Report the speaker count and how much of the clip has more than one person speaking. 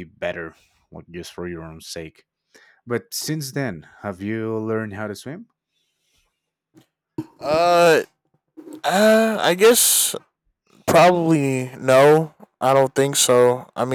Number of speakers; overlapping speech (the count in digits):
2, no overlap